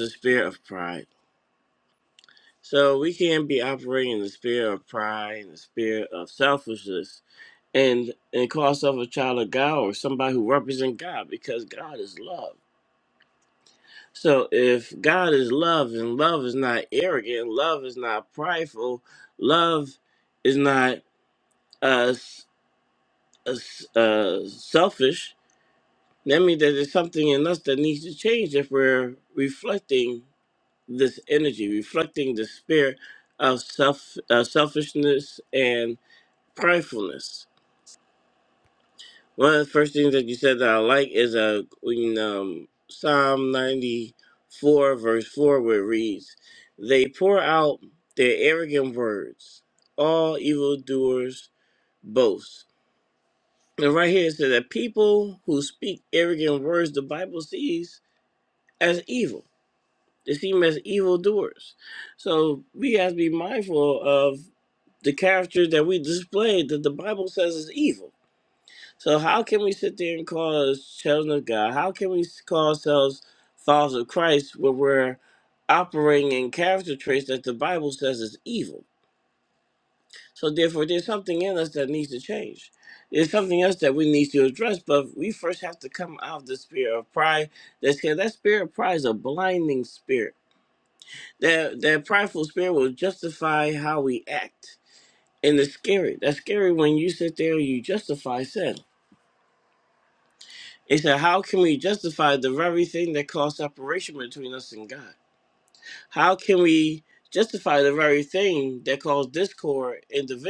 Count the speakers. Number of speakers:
one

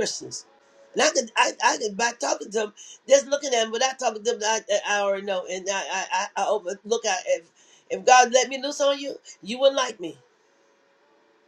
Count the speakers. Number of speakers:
one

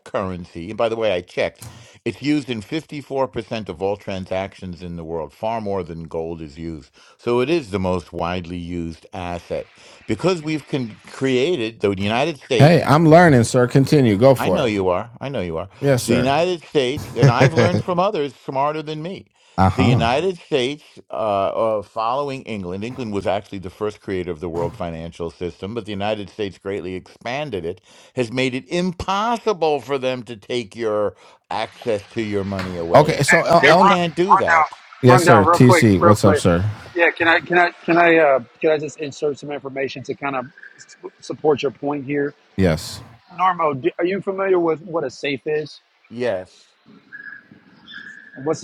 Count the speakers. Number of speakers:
three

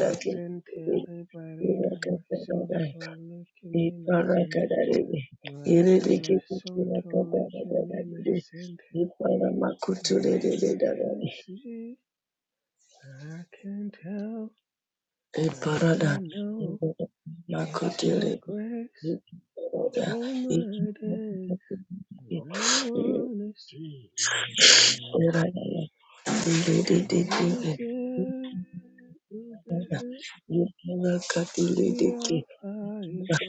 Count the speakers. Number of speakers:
two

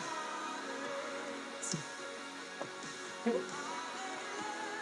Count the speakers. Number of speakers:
zero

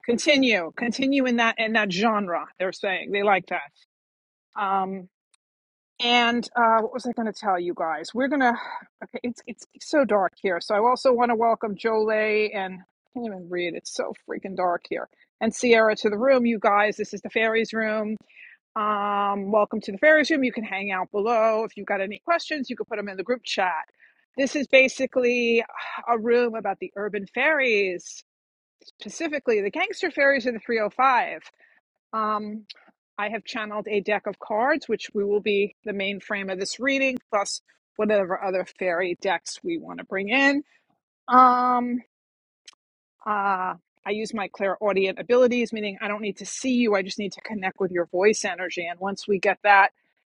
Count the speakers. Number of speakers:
one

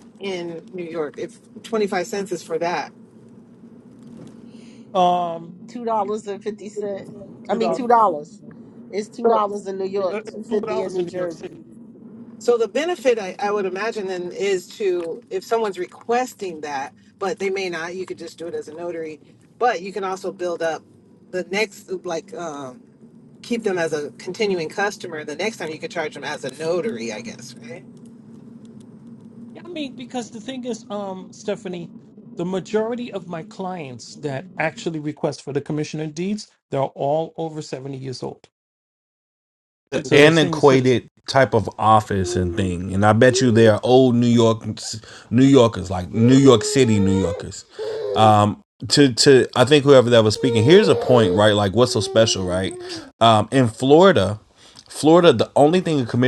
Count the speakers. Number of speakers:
four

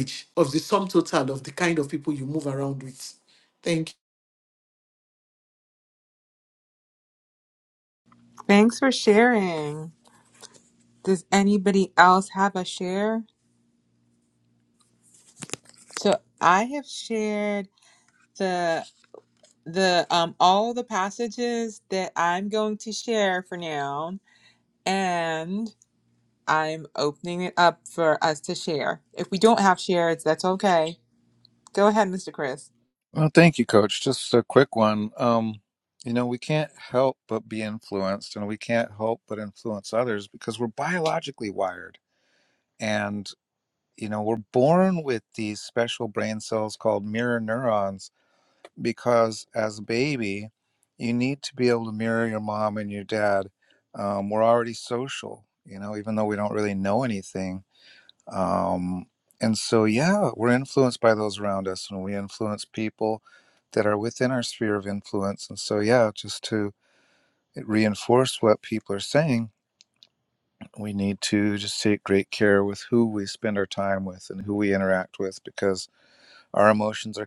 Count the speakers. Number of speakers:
three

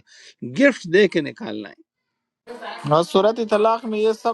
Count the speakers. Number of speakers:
two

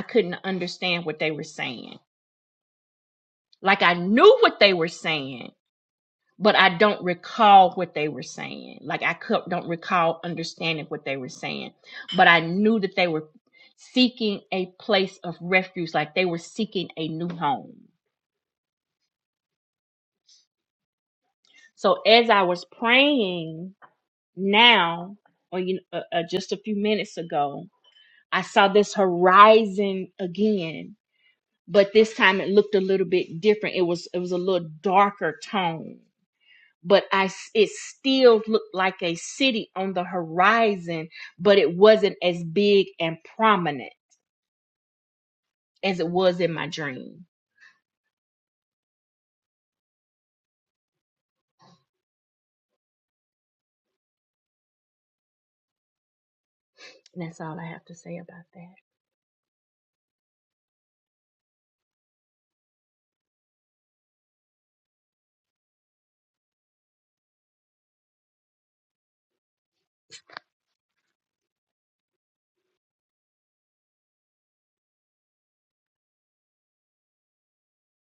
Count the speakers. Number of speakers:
one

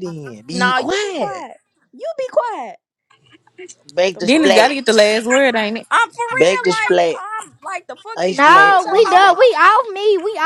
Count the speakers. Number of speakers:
four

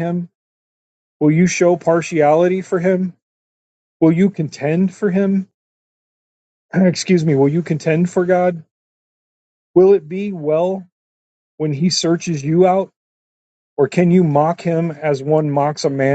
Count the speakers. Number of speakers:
one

